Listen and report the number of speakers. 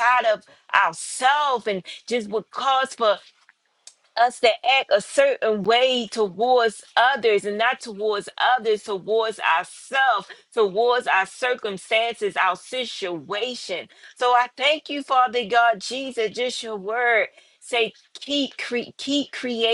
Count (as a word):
one